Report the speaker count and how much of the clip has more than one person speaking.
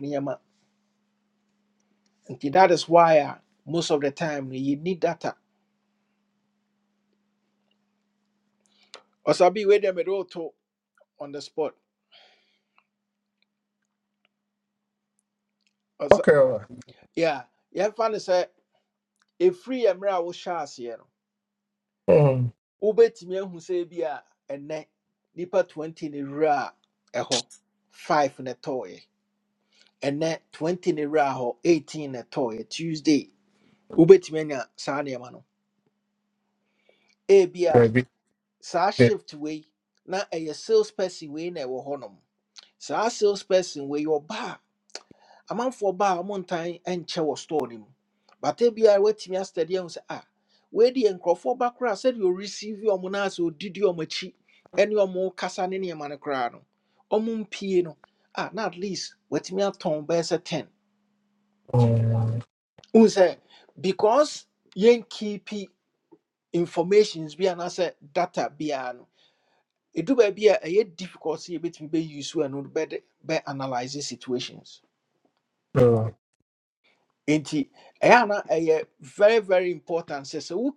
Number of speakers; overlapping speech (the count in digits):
2, about 1%